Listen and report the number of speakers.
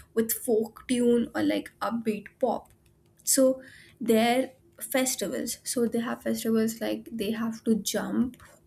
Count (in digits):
1